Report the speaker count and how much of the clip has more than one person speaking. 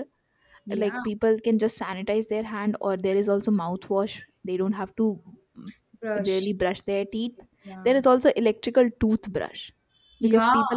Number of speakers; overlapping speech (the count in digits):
2, about 10%